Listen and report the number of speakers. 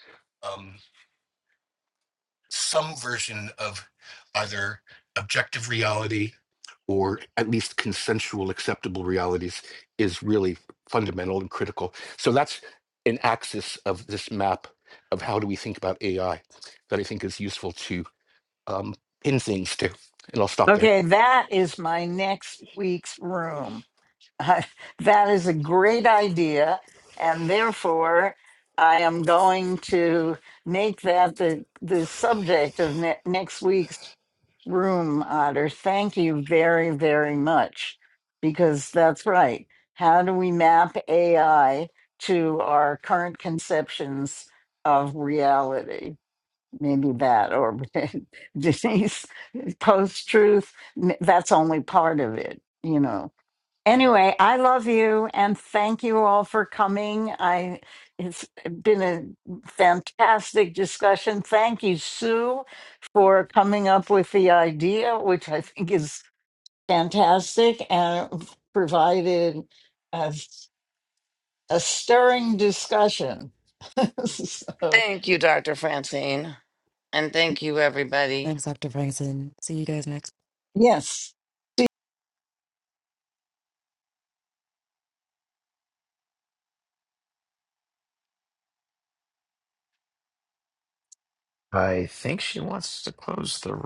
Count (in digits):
5